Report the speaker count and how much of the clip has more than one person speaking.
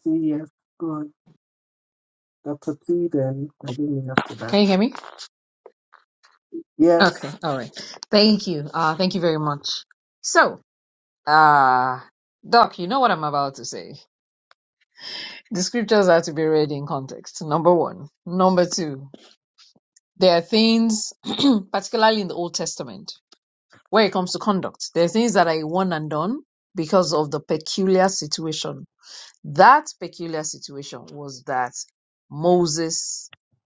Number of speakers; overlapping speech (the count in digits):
2, about 1%